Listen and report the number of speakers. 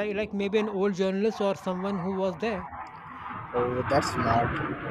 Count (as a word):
two